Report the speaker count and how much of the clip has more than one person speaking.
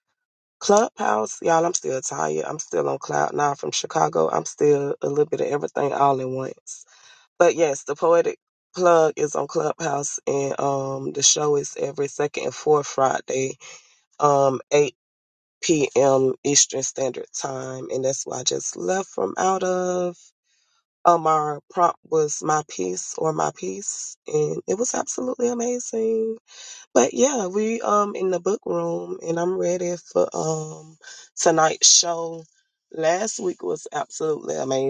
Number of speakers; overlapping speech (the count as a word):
one, no overlap